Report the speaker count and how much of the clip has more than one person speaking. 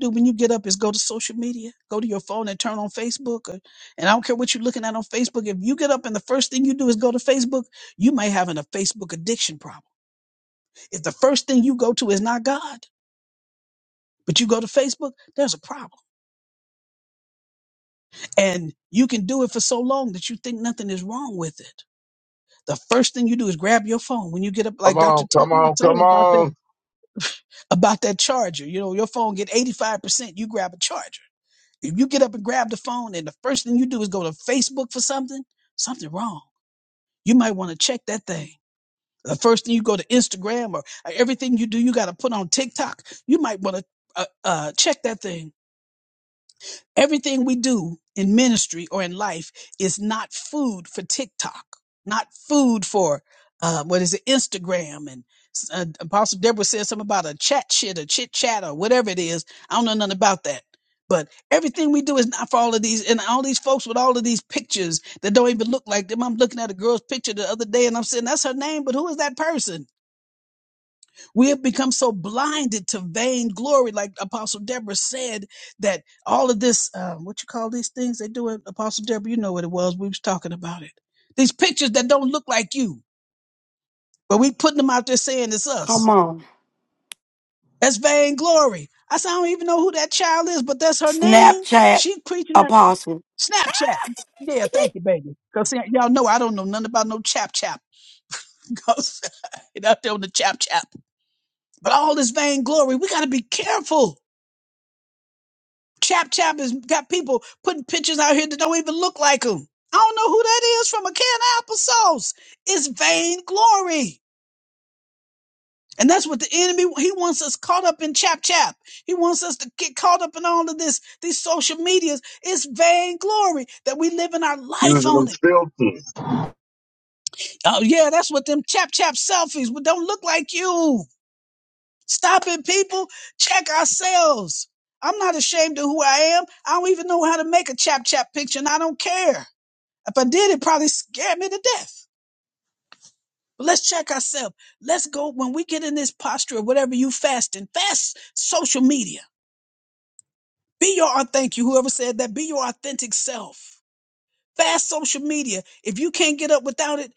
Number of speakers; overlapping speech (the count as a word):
three, about 2%